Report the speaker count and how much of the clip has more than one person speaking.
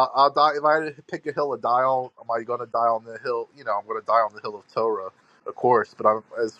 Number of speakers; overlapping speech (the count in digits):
1, no overlap